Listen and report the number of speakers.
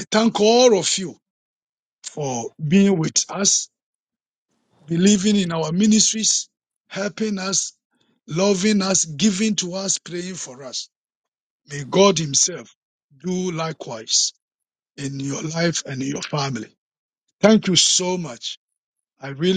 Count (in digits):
1